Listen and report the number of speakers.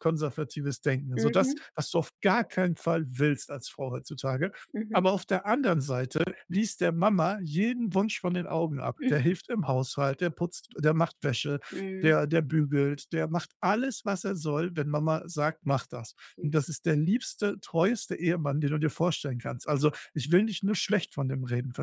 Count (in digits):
2